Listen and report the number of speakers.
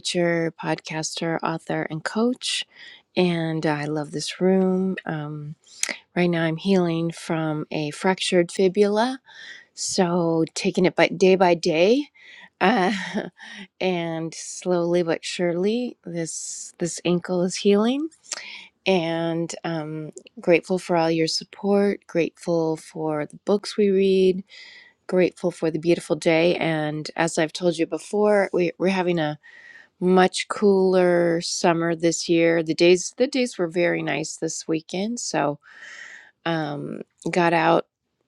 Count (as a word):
one